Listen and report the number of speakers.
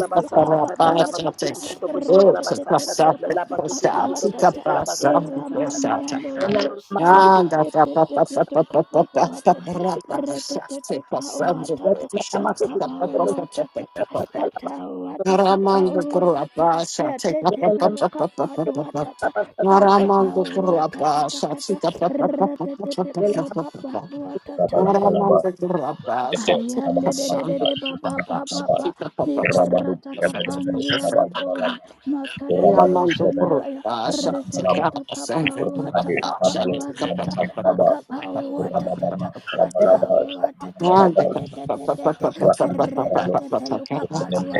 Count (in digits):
4